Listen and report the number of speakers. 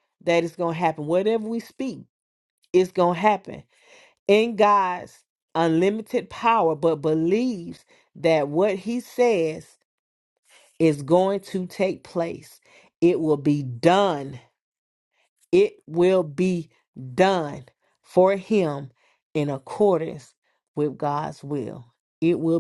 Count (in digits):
1